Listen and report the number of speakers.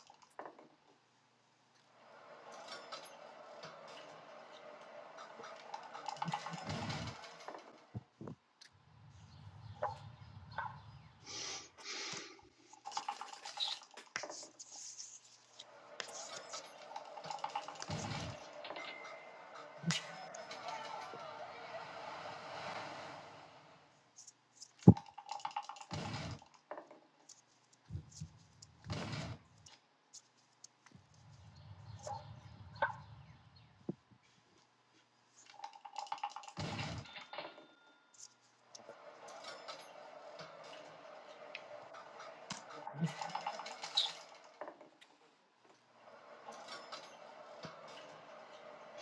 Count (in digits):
0